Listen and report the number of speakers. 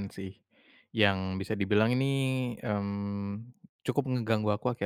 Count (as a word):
one